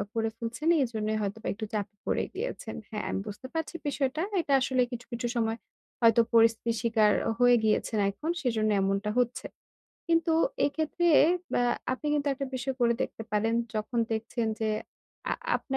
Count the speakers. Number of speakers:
1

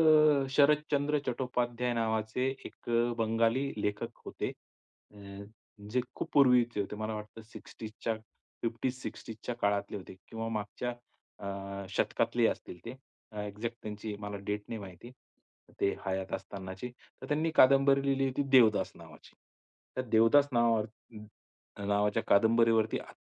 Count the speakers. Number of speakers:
1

